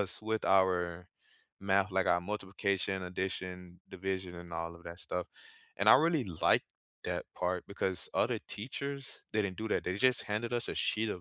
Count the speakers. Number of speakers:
1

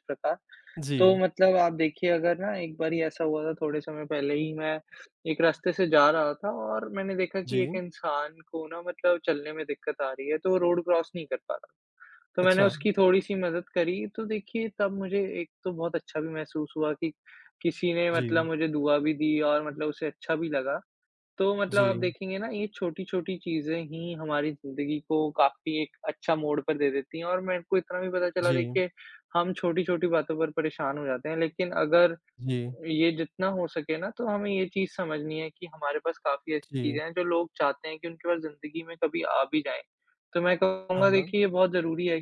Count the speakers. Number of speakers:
2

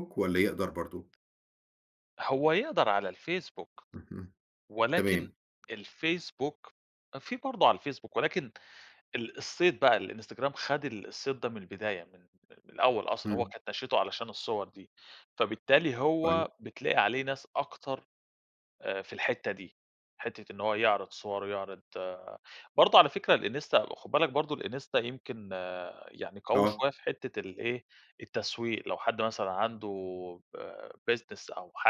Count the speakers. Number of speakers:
2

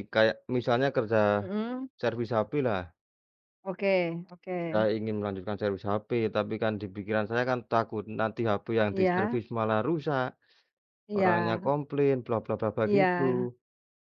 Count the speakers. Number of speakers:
2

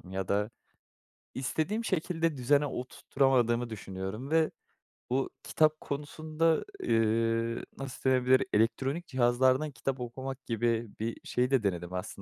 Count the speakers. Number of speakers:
1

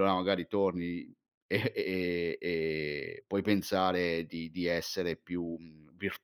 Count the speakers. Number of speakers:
1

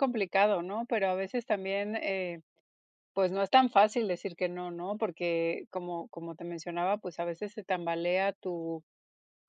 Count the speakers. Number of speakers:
1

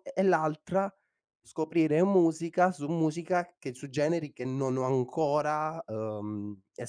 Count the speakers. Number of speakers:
1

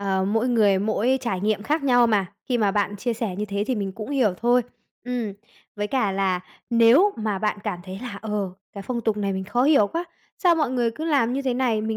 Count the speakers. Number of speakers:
1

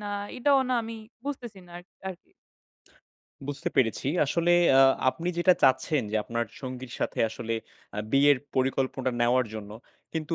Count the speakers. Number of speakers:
2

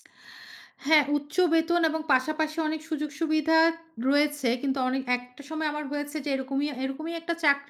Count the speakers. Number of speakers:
1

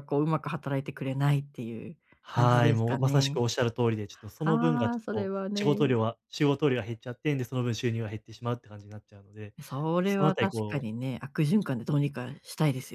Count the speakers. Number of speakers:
2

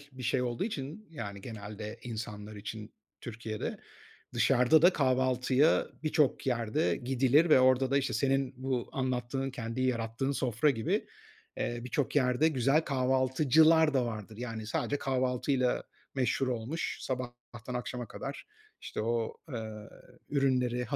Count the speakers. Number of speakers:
1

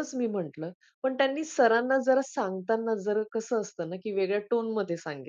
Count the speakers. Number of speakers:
1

